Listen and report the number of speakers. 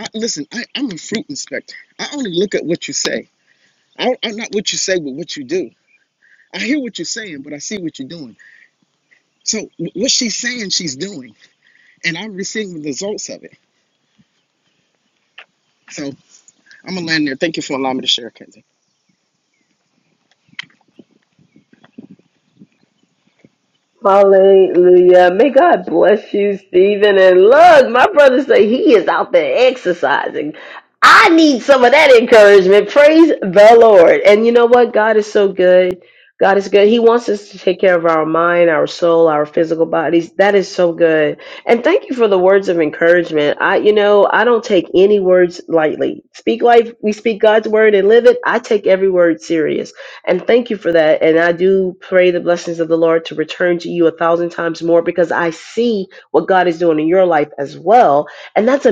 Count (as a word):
two